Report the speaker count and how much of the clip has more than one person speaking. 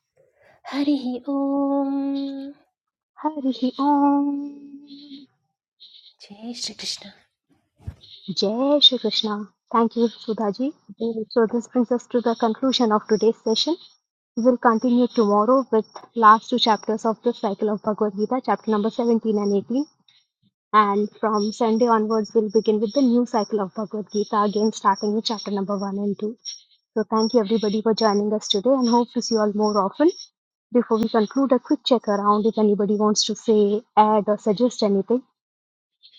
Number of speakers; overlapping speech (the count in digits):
2, no overlap